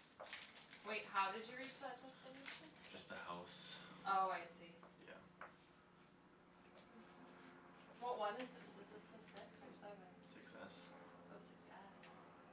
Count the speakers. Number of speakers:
2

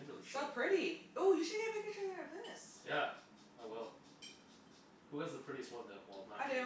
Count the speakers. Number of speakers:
2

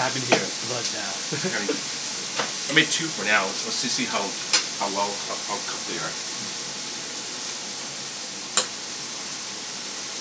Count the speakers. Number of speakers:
2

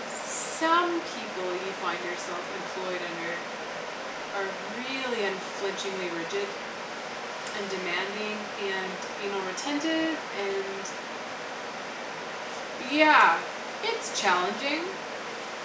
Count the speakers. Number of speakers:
1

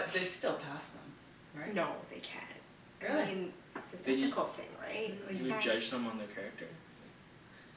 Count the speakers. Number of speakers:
3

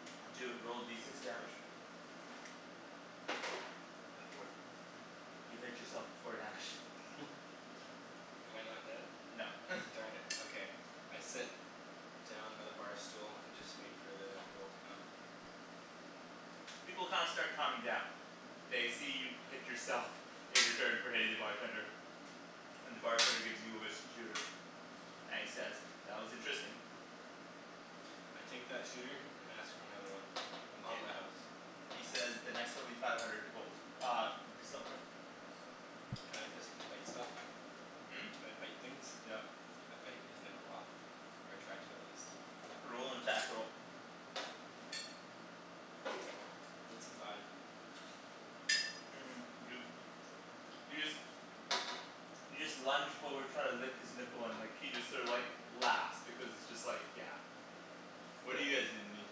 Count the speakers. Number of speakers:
2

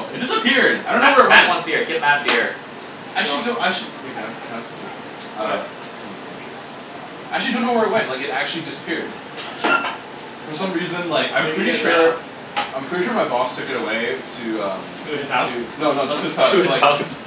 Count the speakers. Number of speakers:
3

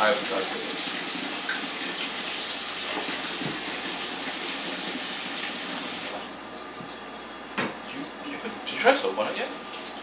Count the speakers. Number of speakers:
1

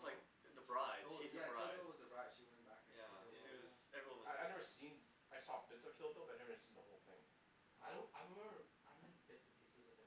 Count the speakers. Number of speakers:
4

